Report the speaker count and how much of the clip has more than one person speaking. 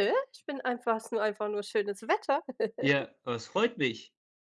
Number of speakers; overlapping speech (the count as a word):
two, no overlap